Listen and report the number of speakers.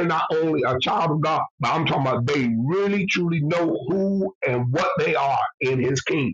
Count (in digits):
1